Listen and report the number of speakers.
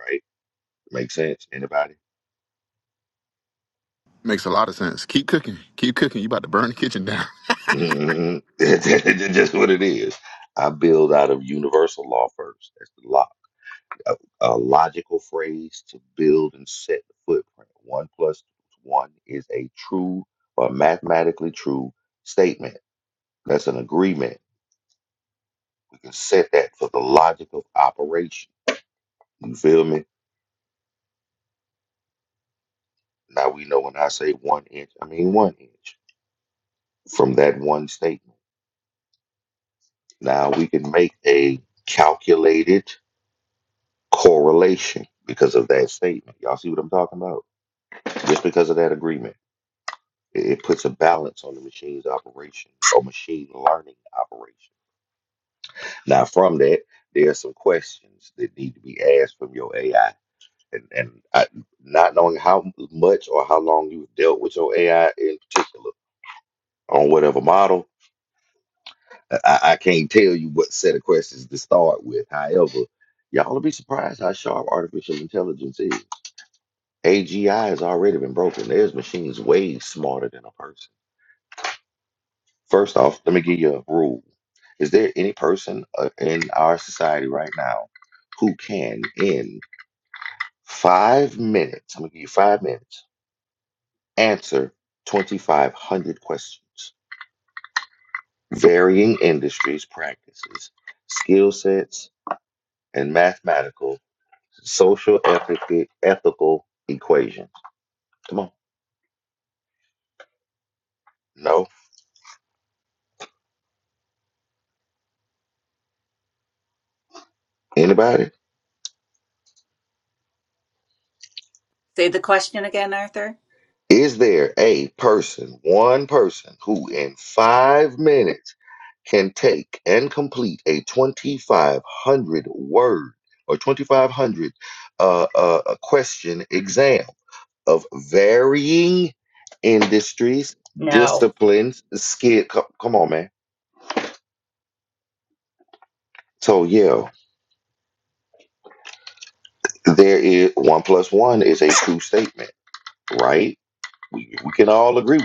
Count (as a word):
three